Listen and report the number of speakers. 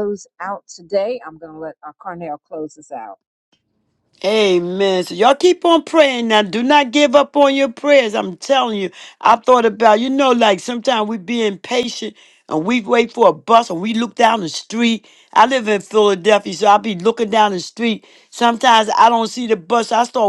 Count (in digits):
2